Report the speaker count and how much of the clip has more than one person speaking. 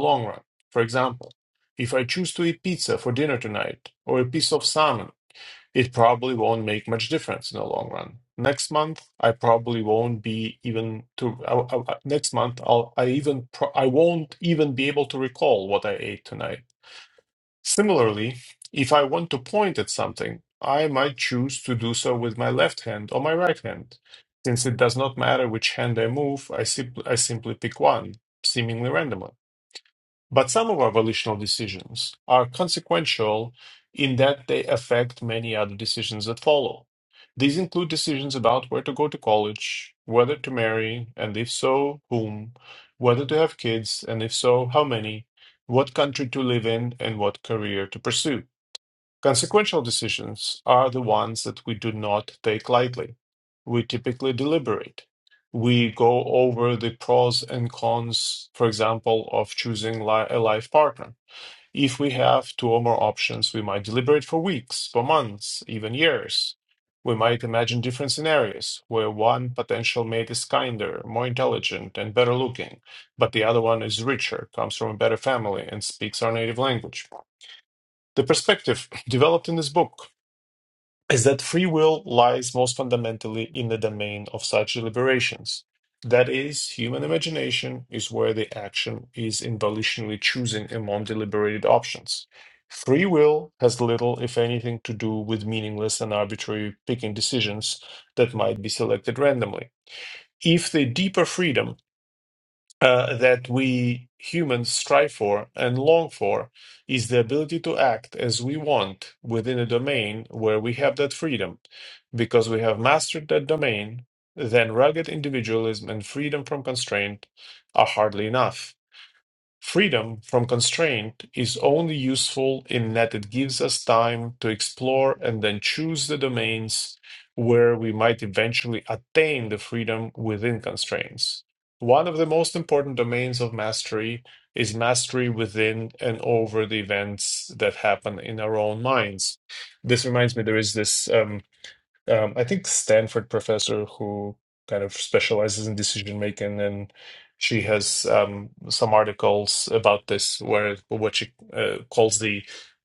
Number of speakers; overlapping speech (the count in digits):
1, no overlap